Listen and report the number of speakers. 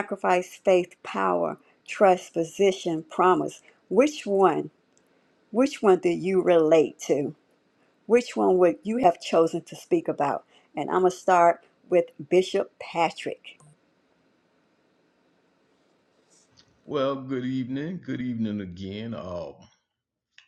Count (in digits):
2